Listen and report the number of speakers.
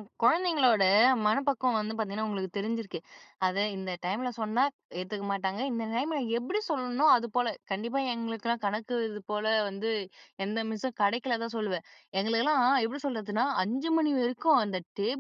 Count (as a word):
one